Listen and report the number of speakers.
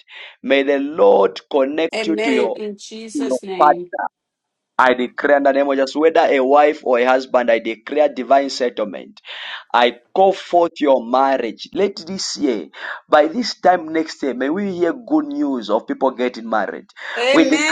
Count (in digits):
2